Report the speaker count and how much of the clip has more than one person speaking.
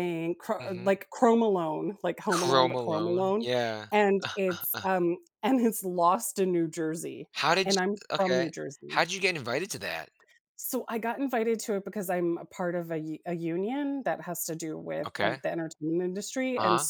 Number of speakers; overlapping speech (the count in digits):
2, about 18%